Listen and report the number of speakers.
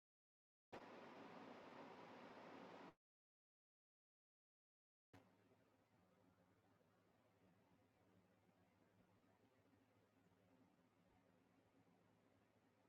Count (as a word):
zero